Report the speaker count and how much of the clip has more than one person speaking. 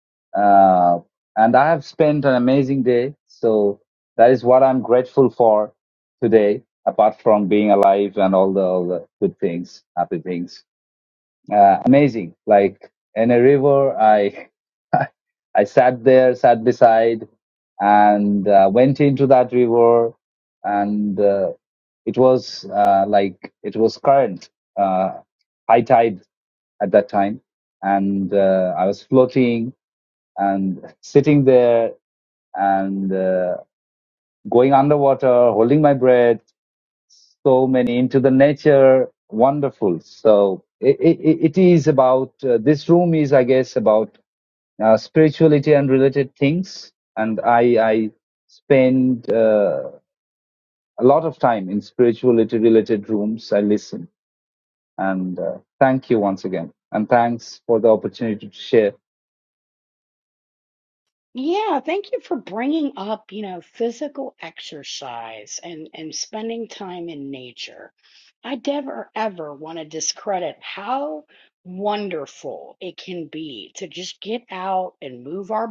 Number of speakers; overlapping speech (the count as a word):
two, no overlap